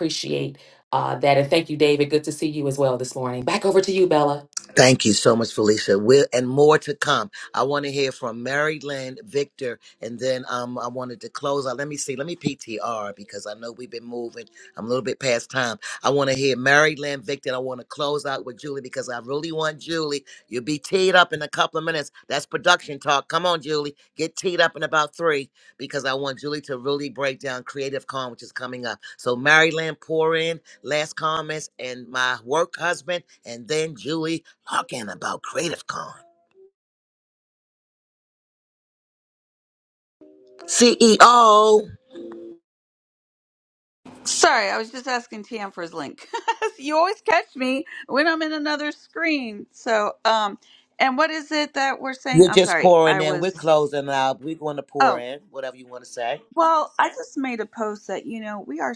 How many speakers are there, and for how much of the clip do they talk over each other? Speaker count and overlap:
3, about 3%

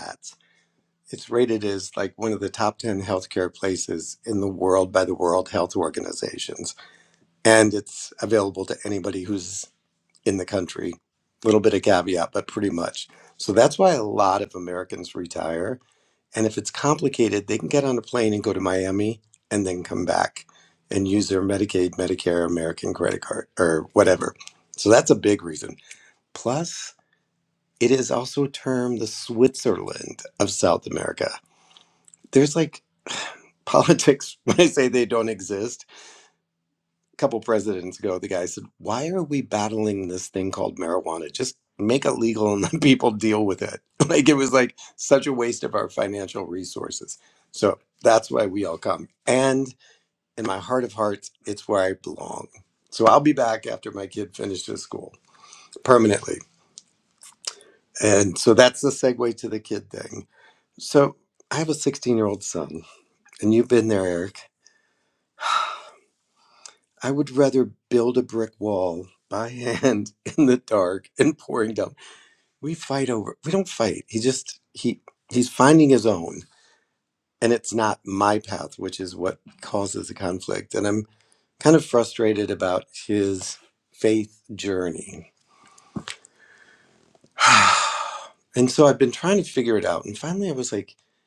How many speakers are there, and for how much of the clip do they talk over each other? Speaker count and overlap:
1, no overlap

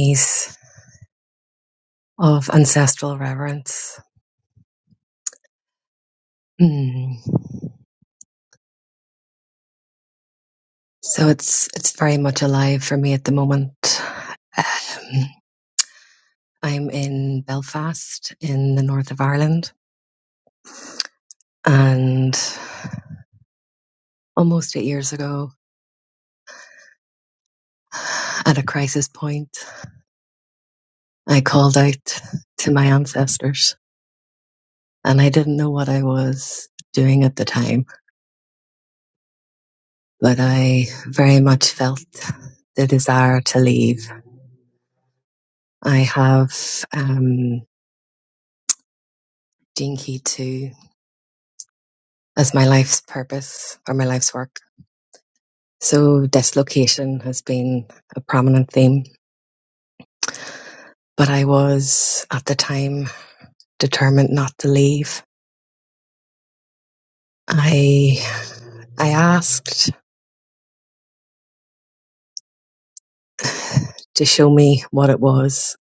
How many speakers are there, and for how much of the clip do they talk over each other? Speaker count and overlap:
1, no overlap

